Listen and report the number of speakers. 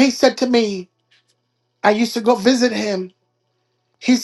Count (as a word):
one